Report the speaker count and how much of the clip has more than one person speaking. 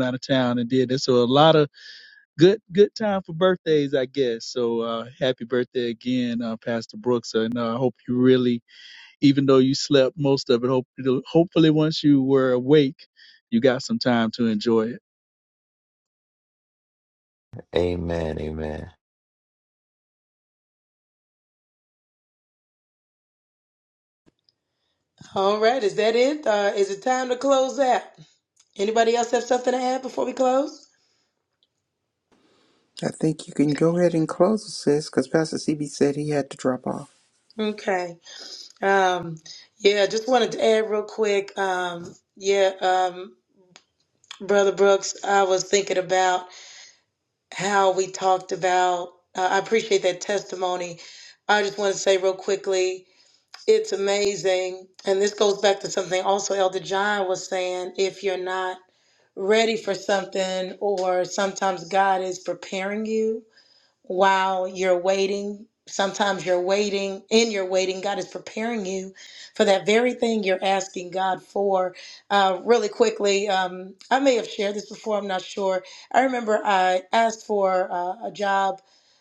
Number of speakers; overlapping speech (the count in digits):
4, no overlap